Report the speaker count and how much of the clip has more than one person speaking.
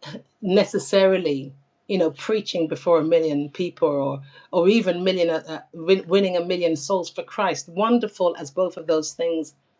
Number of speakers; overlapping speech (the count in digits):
1, no overlap